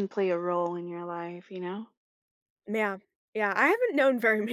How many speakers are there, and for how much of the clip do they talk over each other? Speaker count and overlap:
two, no overlap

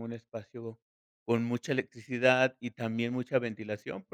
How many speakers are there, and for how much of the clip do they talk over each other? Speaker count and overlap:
one, no overlap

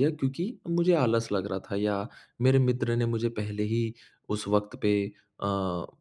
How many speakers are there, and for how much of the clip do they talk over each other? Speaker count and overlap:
one, no overlap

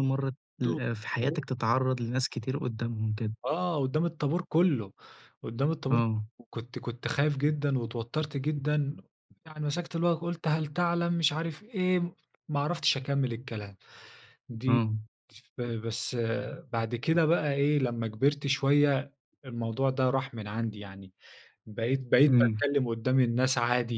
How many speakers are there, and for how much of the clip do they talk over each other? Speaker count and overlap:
two, about 2%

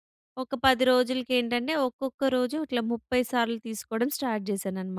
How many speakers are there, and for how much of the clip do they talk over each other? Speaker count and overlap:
one, no overlap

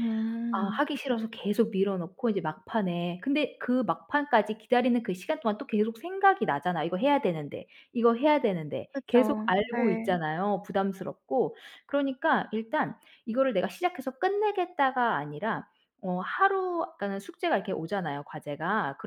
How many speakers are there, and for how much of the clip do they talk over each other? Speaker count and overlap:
two, about 8%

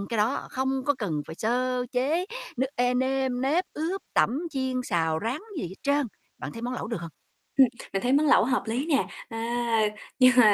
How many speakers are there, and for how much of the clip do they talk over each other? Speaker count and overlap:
two, no overlap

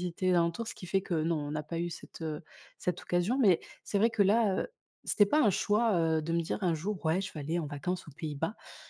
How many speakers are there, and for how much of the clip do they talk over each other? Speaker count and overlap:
one, no overlap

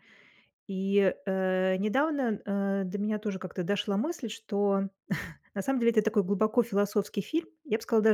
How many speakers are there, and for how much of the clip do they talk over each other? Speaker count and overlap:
one, no overlap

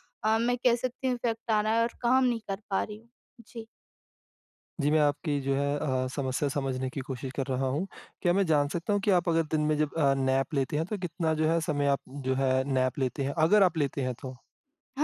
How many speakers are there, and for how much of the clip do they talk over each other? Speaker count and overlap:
two, no overlap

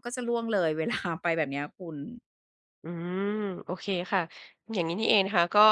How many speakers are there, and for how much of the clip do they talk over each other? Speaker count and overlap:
two, no overlap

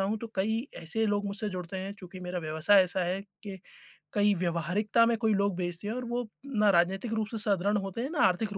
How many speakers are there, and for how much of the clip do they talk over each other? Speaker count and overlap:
one, no overlap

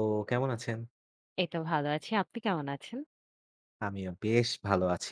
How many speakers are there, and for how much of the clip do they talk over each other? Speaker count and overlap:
two, no overlap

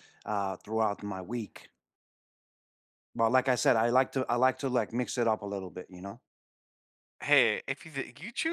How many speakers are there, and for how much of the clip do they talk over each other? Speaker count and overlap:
two, no overlap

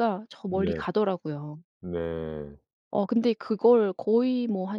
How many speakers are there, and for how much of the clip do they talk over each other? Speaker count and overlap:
two, about 7%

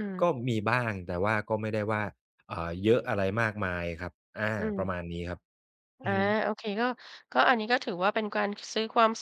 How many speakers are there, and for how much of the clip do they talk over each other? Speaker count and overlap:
two, about 6%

